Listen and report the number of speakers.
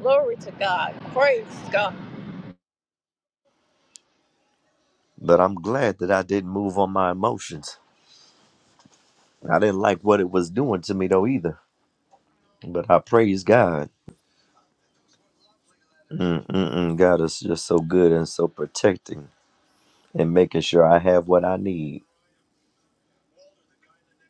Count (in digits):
2